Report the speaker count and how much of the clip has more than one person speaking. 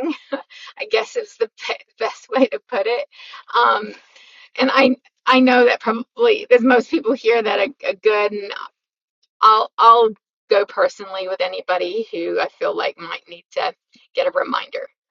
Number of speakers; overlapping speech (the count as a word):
one, no overlap